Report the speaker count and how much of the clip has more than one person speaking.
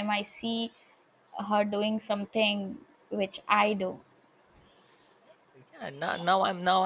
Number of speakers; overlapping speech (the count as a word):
two, no overlap